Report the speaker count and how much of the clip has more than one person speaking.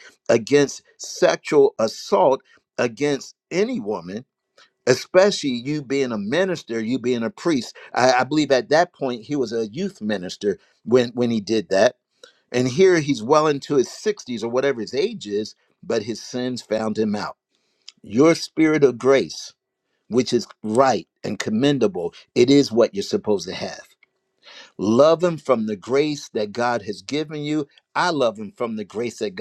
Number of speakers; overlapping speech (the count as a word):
one, no overlap